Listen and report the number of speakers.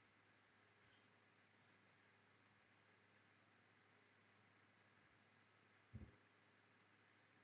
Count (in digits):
0